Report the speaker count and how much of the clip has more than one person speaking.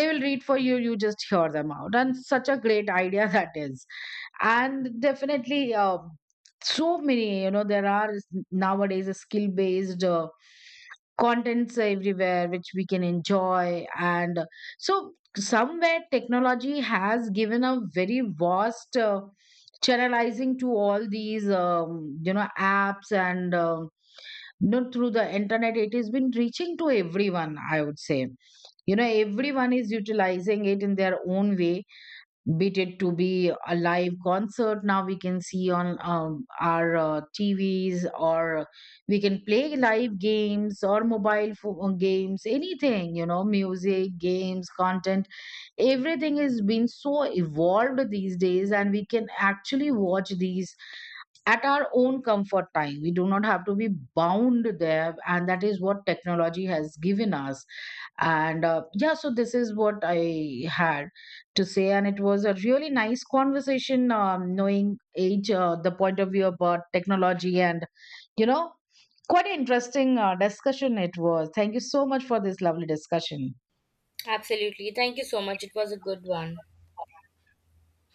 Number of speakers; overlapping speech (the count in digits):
2, no overlap